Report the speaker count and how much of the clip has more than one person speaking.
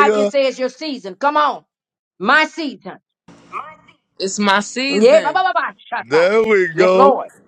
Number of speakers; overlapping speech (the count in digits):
3, about 14%